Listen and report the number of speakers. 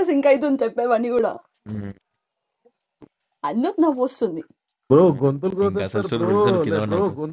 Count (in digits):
3